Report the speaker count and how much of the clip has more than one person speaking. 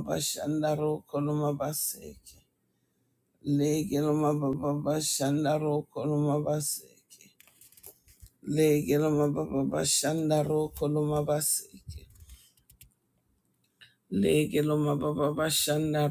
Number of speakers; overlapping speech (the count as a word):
one, no overlap